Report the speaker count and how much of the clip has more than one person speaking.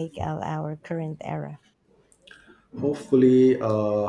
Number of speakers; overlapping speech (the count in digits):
2, no overlap